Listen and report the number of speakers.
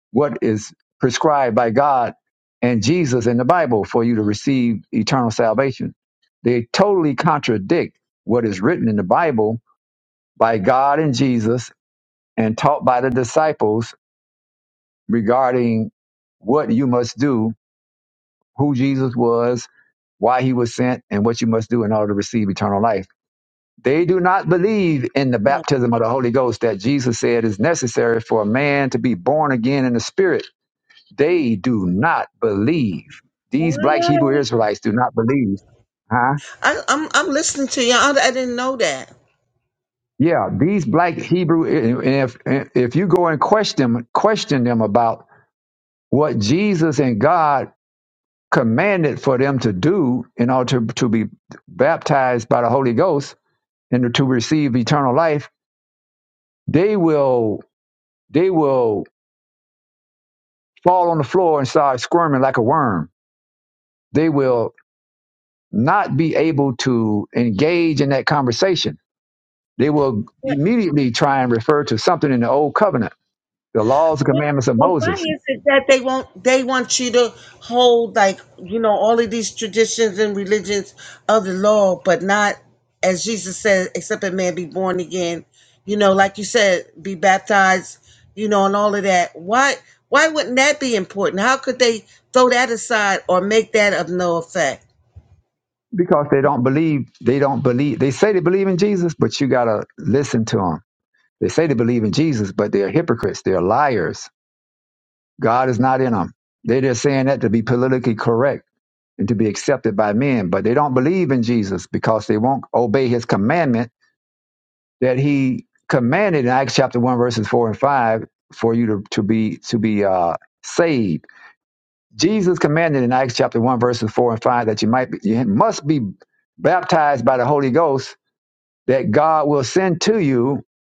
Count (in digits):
2